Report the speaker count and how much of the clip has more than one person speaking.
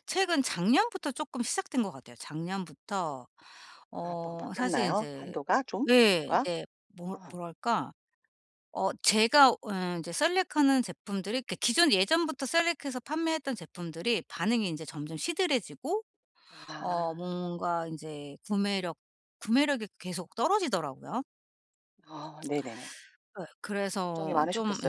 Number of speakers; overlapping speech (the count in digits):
2, about 13%